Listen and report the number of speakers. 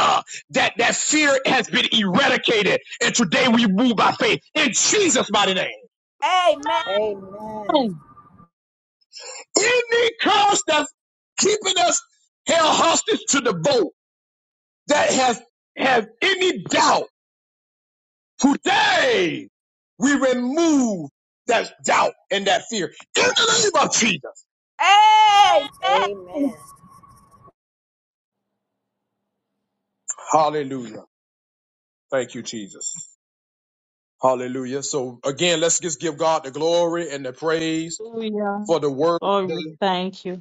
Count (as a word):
four